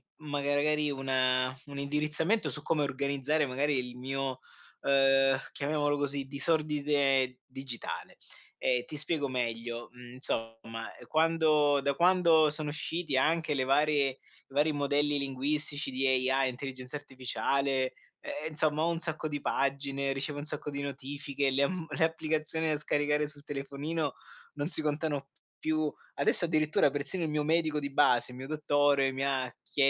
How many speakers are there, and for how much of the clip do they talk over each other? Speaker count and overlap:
one, no overlap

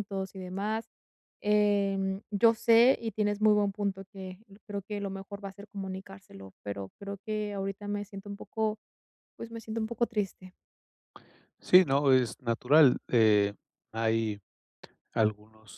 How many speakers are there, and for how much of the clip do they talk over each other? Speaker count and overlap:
two, no overlap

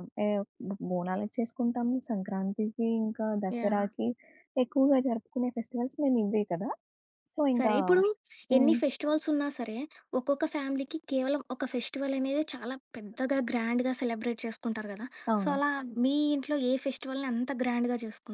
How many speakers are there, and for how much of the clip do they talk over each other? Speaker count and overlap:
two, about 6%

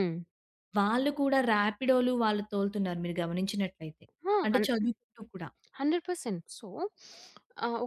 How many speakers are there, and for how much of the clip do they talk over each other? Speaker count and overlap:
two, about 3%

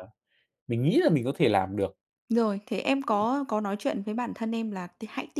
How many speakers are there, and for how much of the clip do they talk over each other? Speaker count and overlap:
two, no overlap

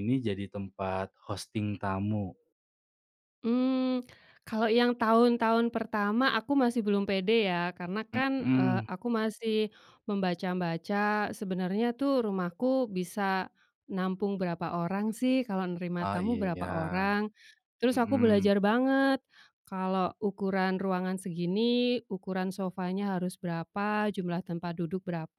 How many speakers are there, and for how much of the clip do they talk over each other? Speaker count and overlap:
two, about 7%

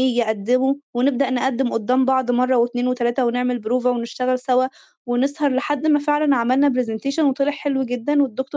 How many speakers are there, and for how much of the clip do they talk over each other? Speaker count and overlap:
one, no overlap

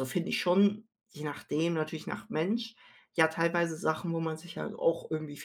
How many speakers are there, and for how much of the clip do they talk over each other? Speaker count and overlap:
one, no overlap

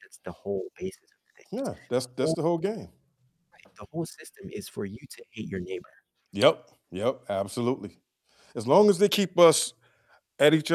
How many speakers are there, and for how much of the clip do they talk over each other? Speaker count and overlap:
two, about 2%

